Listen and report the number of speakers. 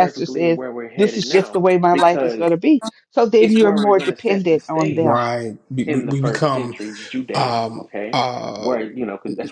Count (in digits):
3